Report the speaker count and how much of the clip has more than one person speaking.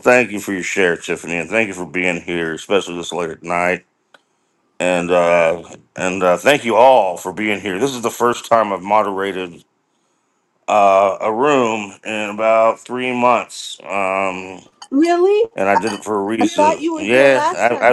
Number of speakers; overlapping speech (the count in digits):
2, about 9%